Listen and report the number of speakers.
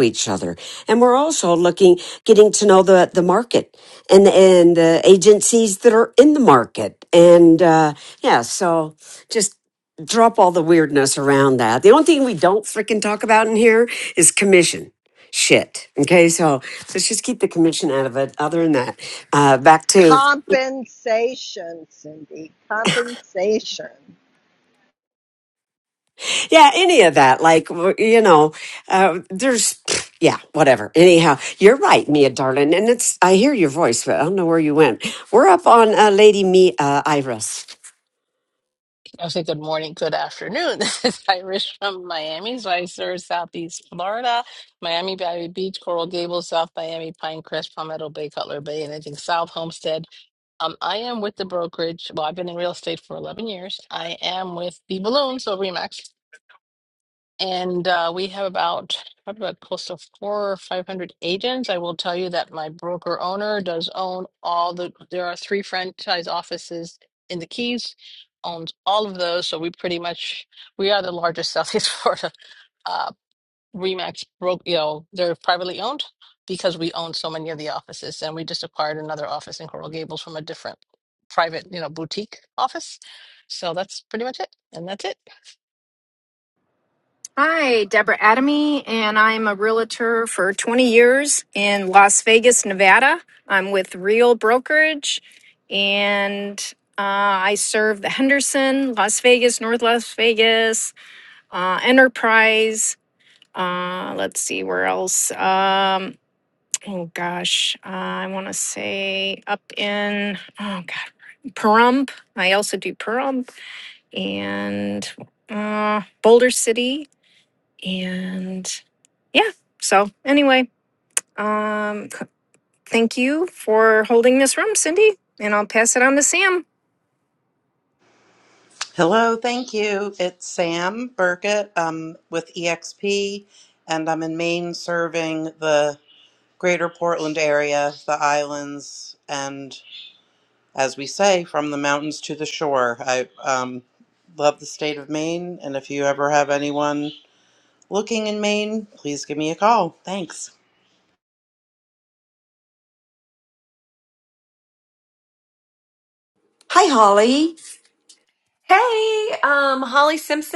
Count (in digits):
6